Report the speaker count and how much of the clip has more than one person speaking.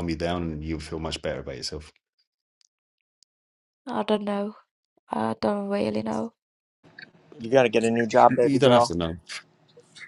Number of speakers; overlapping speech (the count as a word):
three, about 6%